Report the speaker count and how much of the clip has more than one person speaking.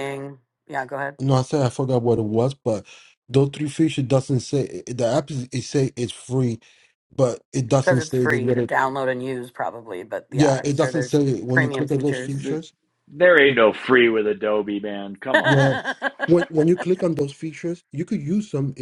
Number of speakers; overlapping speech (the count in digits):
3, about 15%